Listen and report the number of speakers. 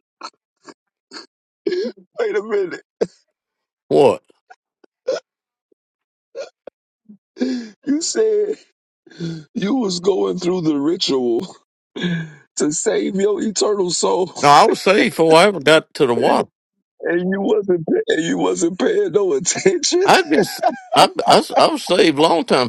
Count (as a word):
two